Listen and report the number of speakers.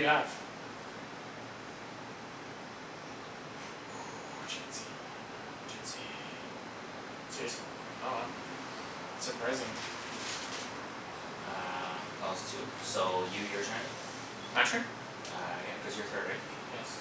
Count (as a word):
two